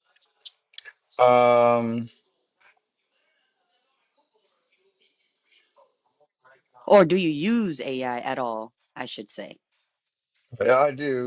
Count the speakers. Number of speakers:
two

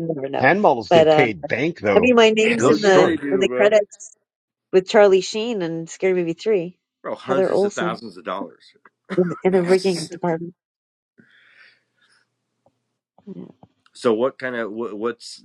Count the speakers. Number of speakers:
three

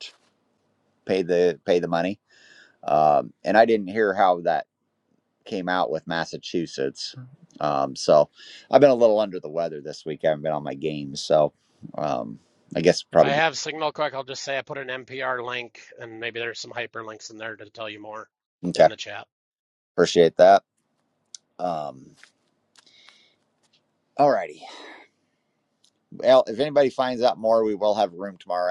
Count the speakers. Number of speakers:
two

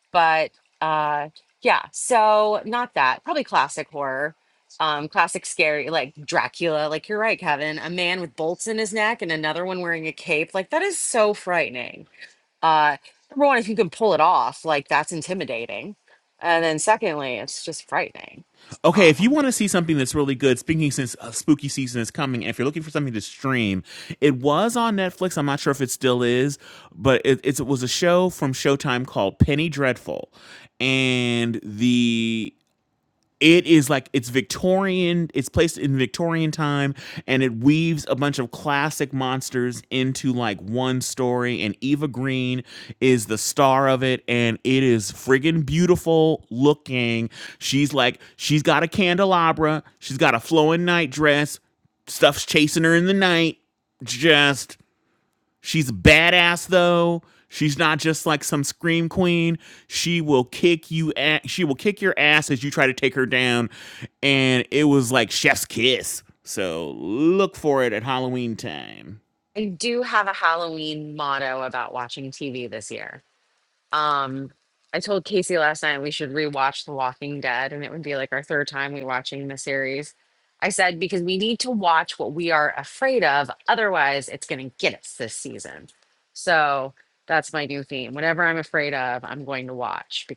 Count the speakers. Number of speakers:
two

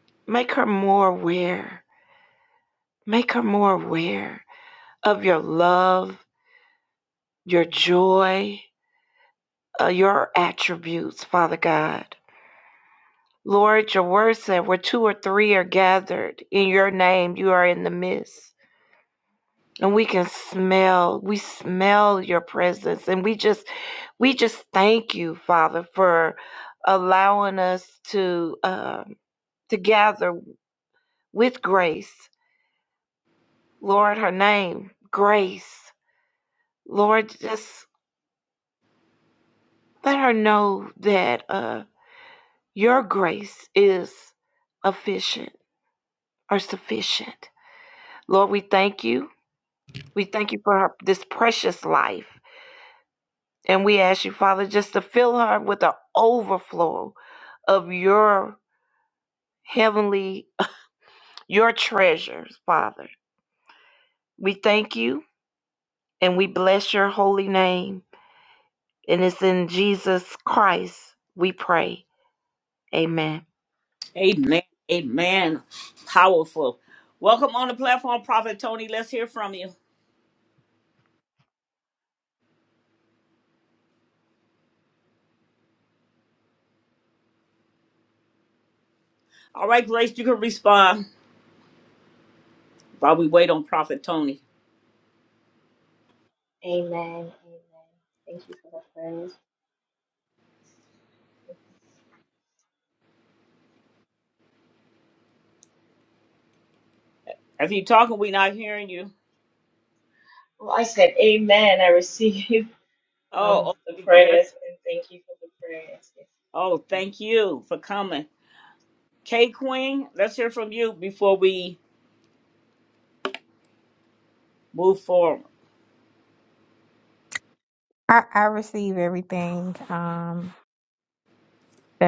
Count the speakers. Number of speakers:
four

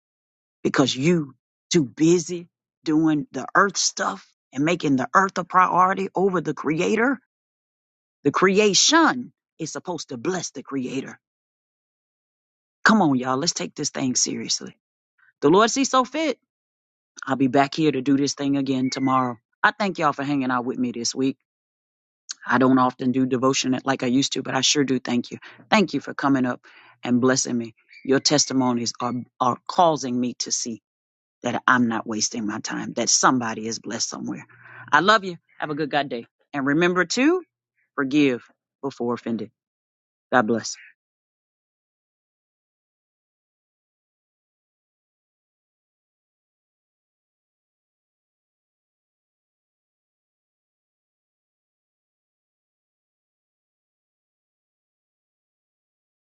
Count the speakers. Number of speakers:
one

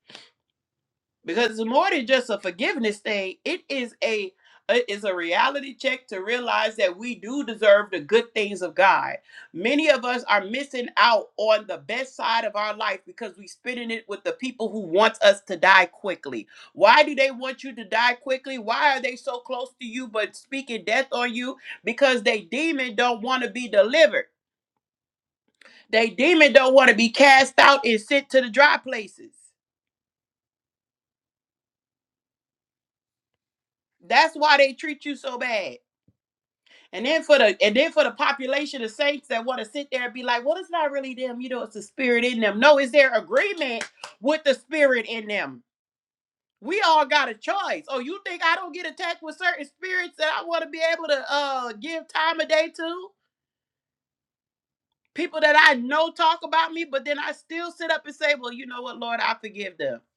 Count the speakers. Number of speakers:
one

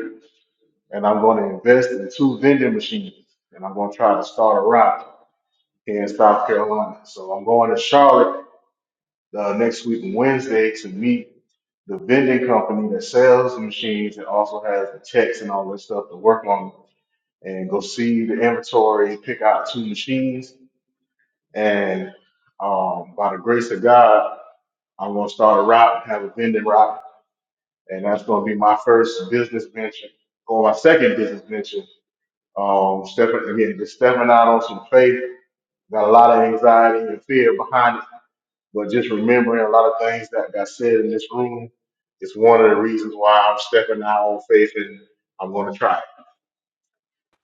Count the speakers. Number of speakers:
one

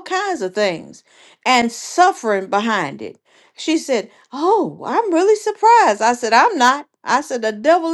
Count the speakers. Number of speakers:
one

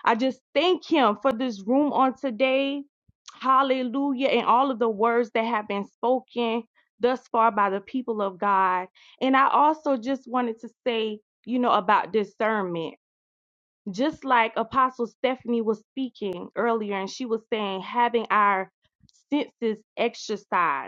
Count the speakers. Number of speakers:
one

